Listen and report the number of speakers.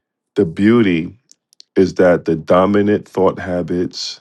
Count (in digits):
1